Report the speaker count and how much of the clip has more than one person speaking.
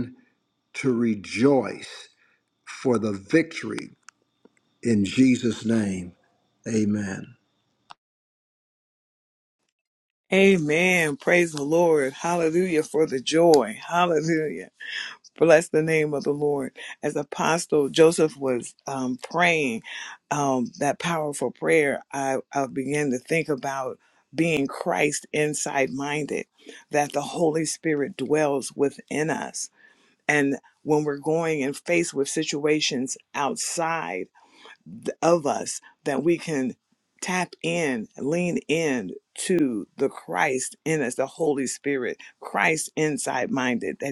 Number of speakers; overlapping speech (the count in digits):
2, no overlap